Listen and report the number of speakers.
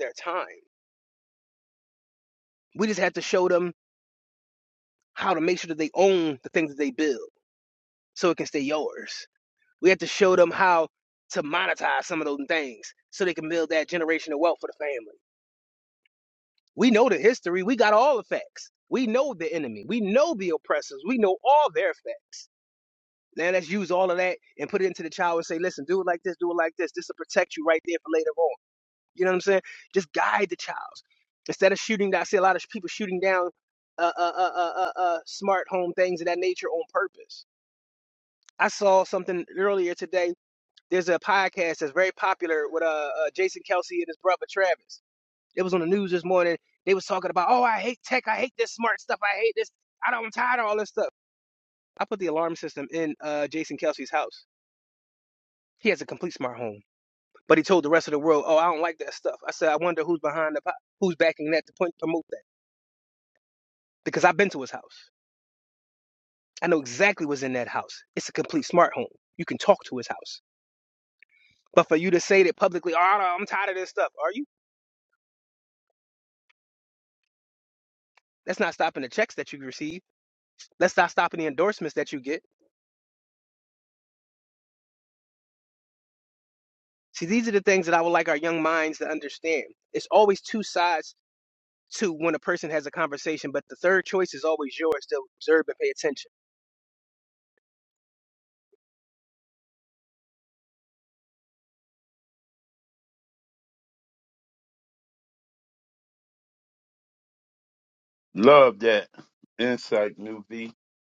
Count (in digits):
2